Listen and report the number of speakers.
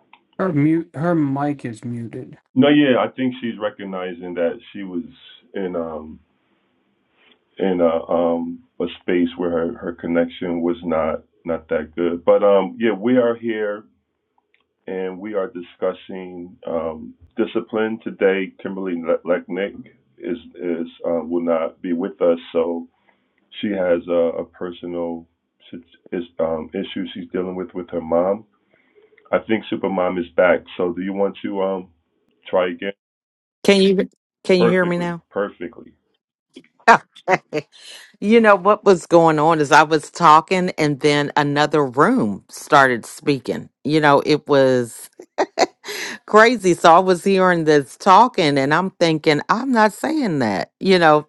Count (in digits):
3